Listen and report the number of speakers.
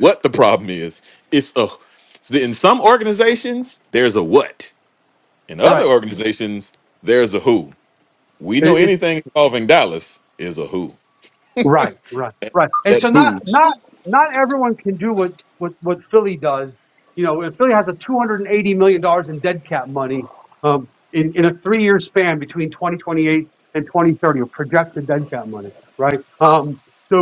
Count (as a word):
two